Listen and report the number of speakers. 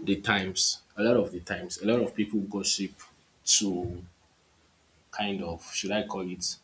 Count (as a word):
one